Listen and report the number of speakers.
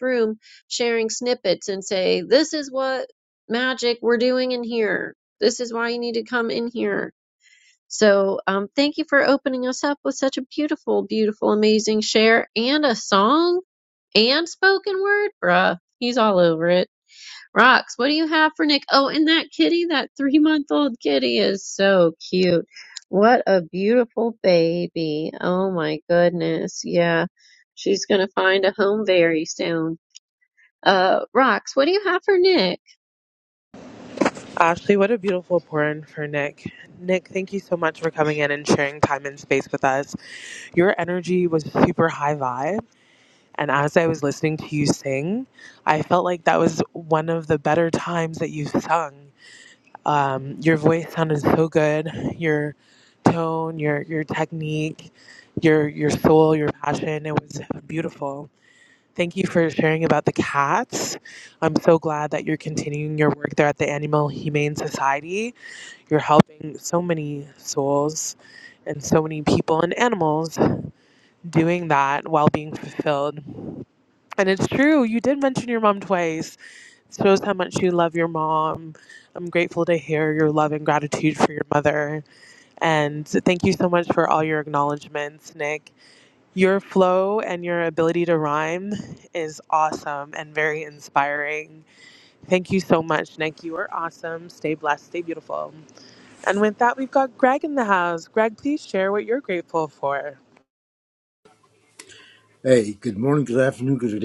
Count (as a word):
three